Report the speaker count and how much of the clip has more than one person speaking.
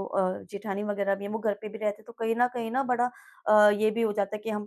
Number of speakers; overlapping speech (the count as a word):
one, no overlap